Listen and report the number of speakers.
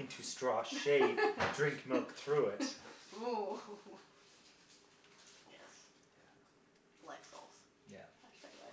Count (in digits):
2